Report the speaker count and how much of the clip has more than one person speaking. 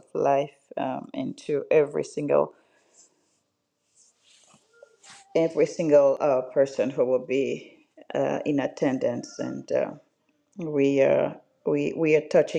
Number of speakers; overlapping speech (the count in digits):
1, no overlap